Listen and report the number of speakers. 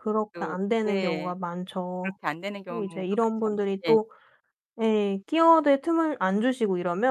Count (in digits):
2